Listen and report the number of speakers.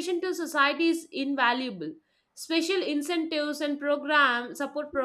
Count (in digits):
1